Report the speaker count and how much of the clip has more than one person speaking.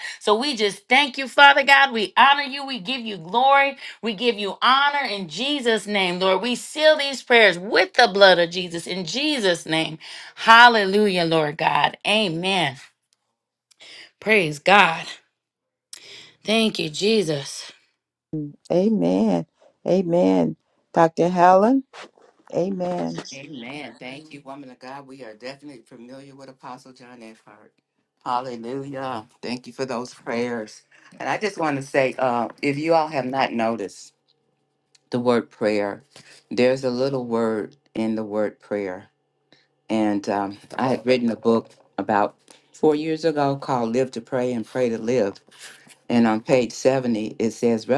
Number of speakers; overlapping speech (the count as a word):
three, no overlap